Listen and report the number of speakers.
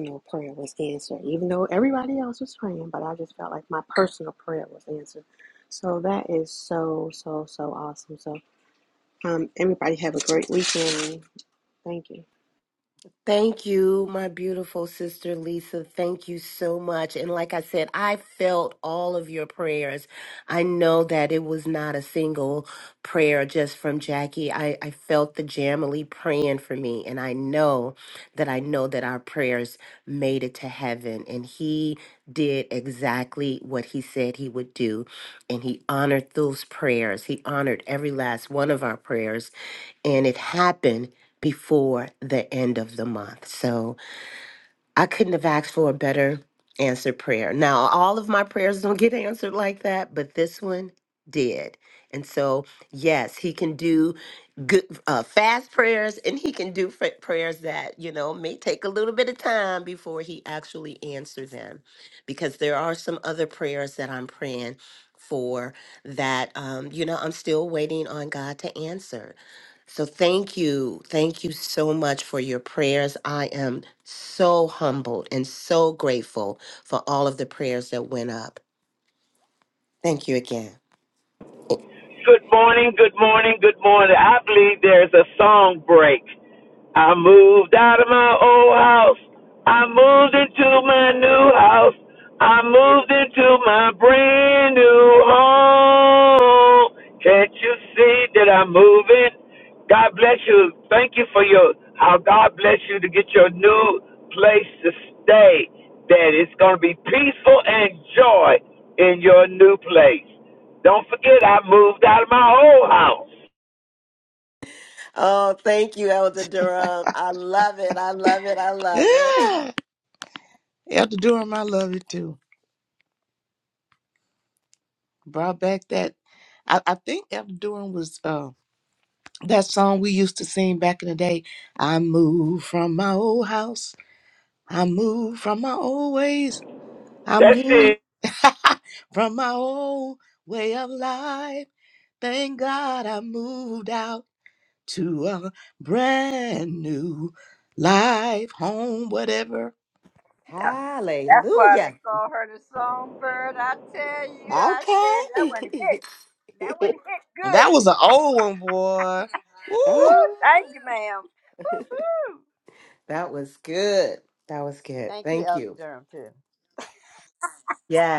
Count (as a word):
five